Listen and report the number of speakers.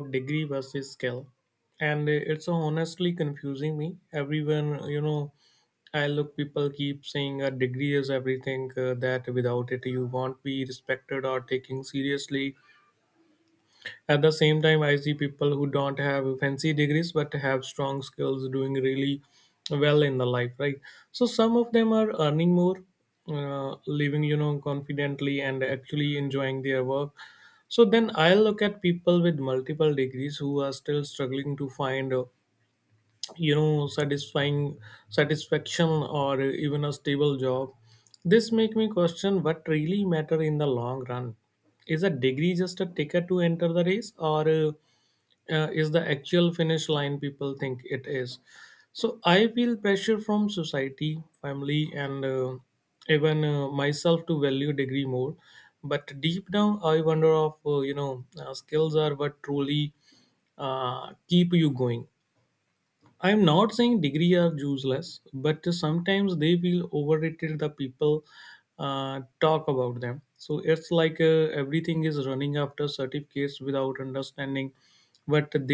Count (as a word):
one